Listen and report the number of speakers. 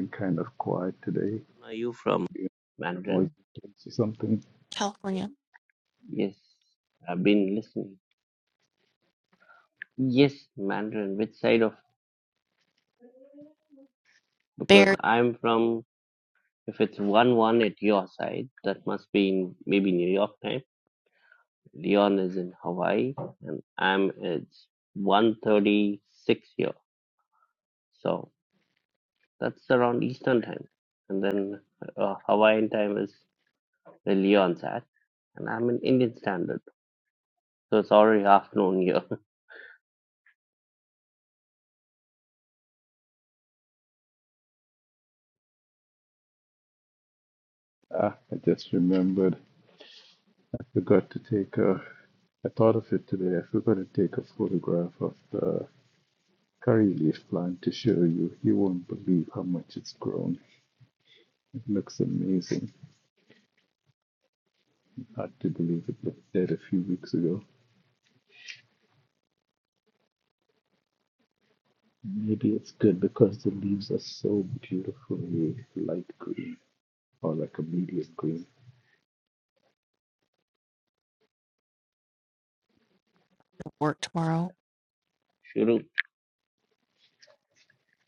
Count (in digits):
3